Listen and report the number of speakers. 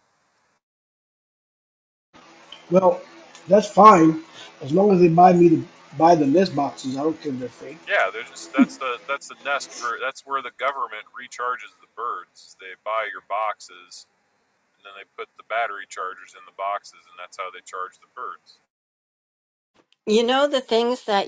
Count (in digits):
3